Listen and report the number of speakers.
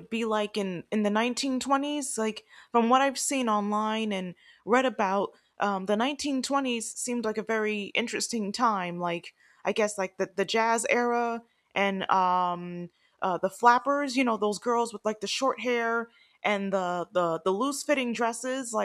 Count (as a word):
one